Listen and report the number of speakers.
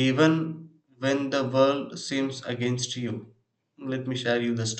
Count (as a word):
one